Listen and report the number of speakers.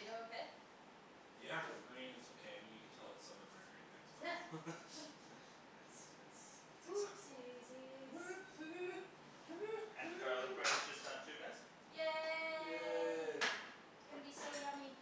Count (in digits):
4